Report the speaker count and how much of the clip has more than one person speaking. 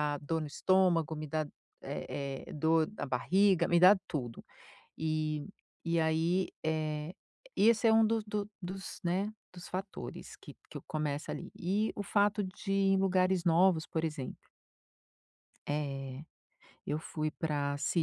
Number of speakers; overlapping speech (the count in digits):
1, no overlap